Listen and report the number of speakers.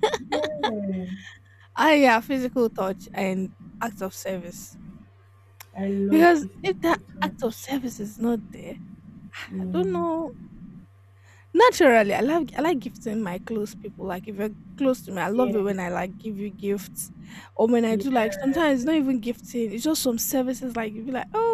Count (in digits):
2